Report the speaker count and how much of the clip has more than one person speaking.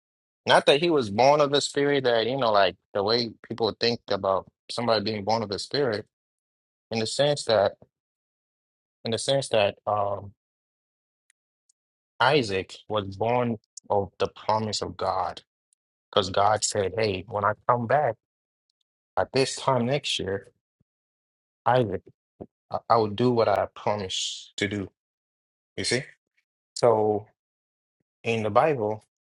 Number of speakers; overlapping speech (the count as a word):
one, no overlap